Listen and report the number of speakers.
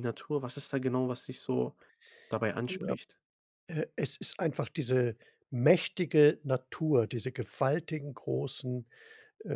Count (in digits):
2